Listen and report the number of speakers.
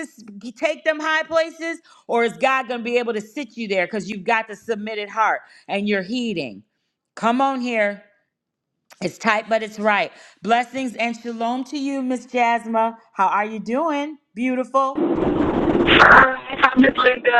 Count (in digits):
2